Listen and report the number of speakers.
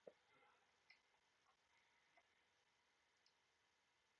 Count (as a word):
zero